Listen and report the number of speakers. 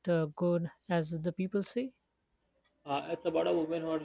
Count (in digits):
2